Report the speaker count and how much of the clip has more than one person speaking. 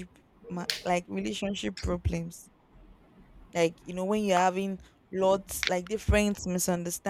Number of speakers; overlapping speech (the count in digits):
1, no overlap